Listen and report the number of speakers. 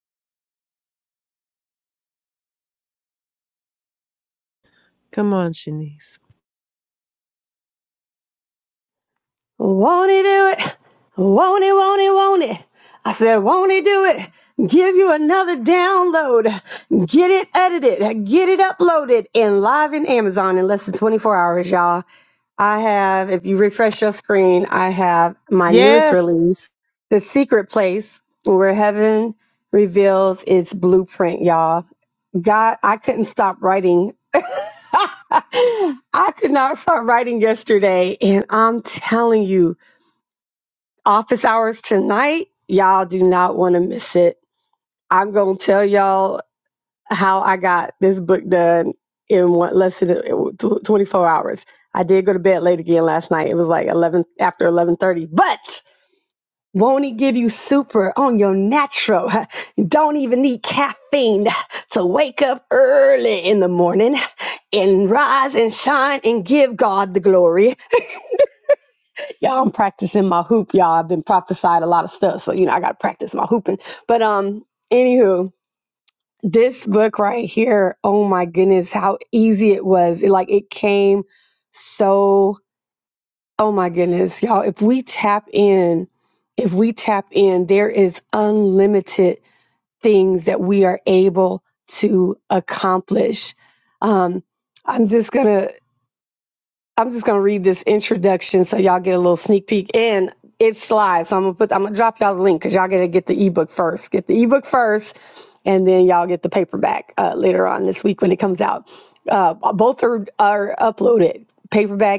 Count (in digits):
2